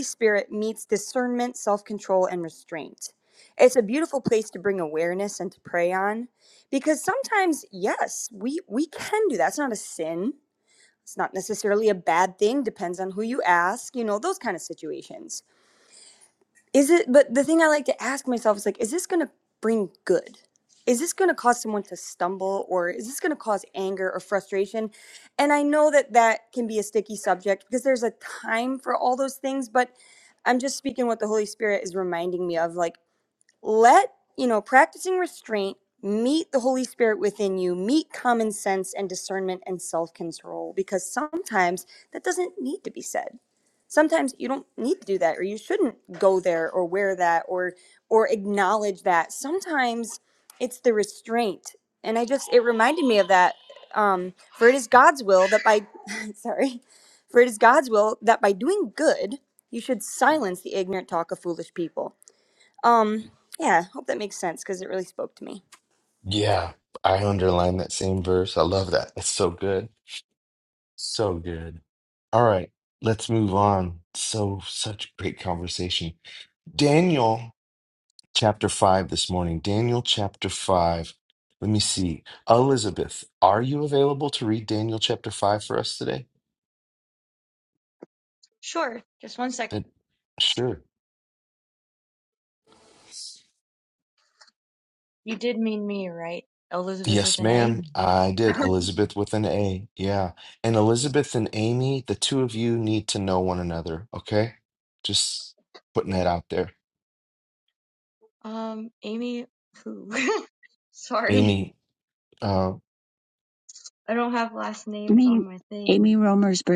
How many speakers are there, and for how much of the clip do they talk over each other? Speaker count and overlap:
four, about 1%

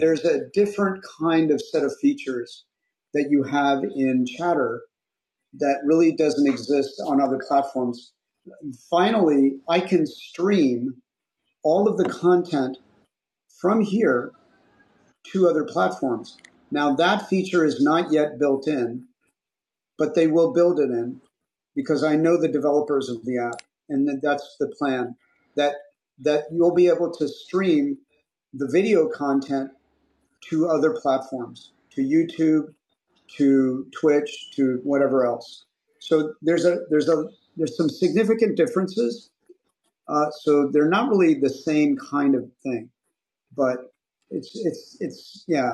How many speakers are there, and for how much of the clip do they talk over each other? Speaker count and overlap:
one, no overlap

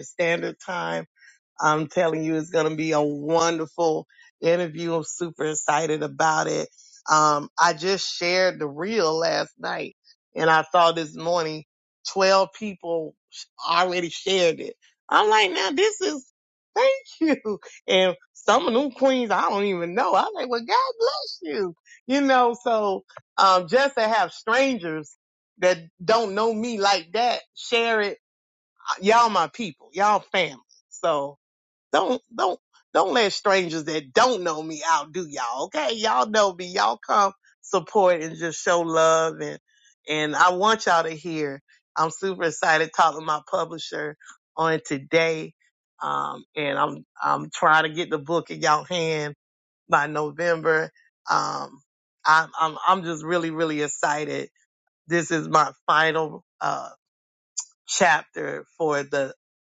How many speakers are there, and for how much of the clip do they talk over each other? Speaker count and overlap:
one, no overlap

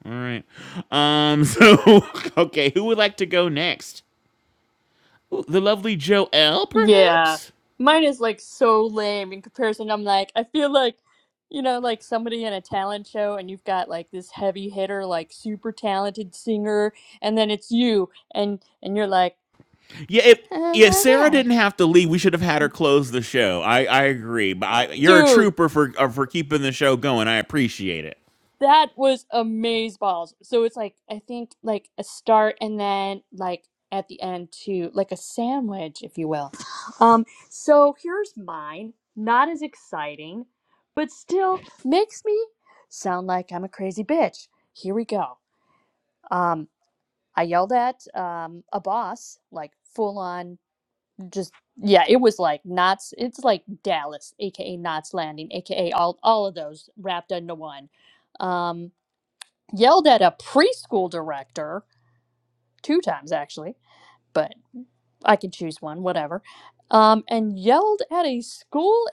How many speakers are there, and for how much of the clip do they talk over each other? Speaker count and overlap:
two, about 2%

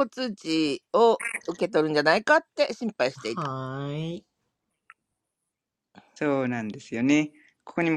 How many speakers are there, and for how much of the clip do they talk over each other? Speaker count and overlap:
three, about 4%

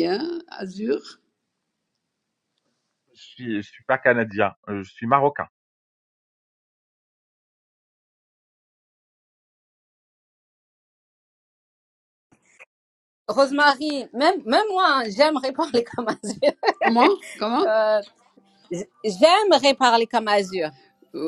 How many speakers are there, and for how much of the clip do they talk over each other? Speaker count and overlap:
three, about 1%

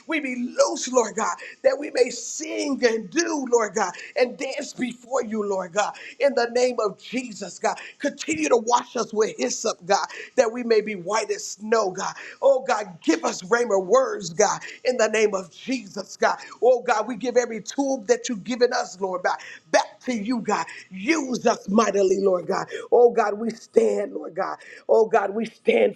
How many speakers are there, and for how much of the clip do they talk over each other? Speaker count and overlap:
one, no overlap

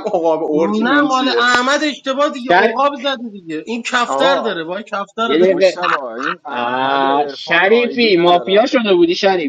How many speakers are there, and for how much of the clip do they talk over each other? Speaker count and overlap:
four, about 44%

